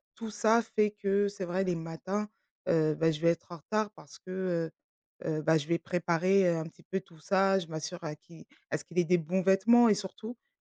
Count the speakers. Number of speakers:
1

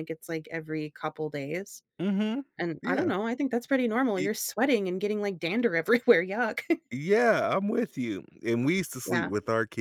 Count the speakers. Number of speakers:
2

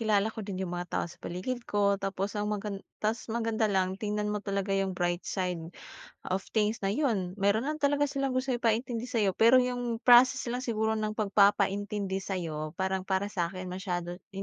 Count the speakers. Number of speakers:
1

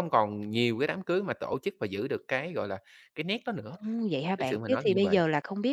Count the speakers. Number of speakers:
2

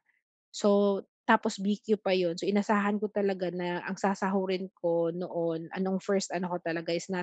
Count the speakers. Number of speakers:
1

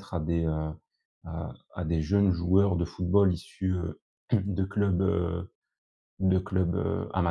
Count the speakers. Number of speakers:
1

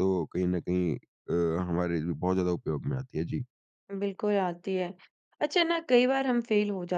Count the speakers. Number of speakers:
2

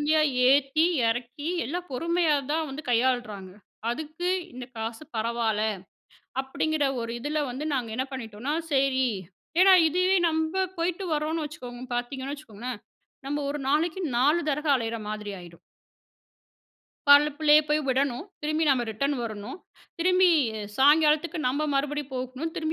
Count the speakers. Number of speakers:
1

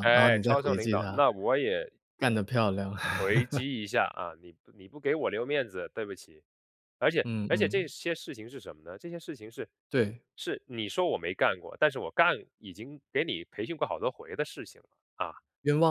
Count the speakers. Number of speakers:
2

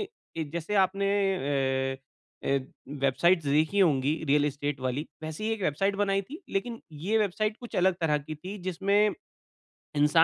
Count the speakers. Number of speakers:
1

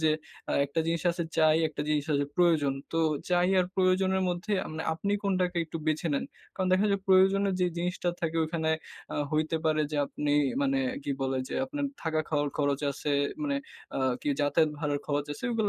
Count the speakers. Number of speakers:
1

